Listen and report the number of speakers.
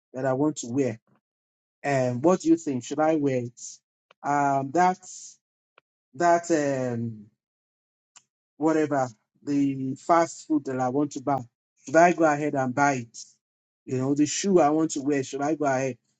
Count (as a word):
one